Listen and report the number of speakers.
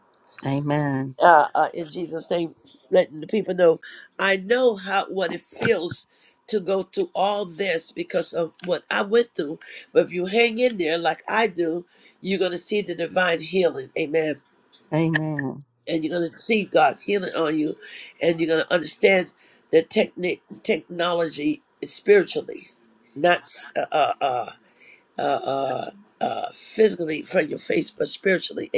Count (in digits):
2